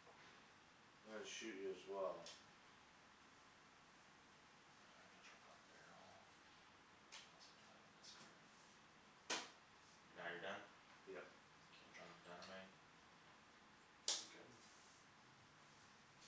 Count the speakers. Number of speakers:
two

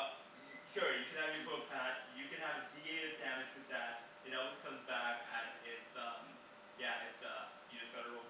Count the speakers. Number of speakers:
one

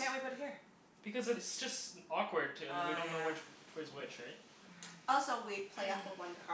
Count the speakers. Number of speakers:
three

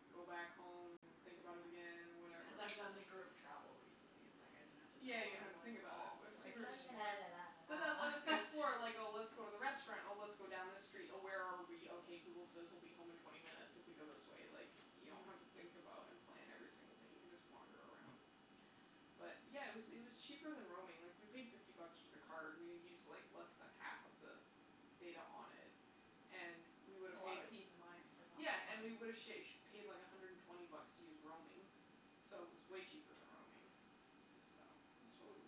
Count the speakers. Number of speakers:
two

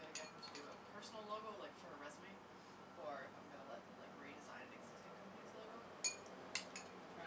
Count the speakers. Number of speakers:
one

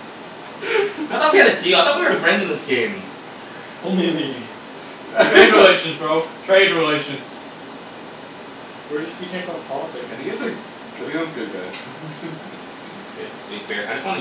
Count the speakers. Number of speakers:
four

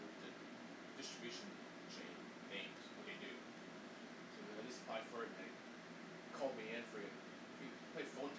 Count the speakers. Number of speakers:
one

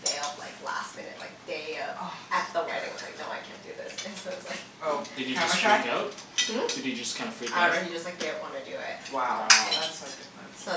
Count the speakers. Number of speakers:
three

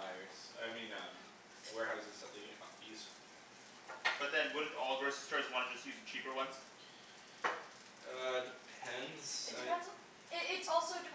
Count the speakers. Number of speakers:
three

